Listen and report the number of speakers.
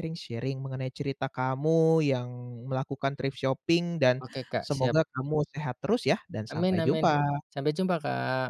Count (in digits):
2